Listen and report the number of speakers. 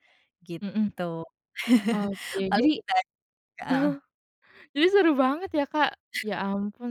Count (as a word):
two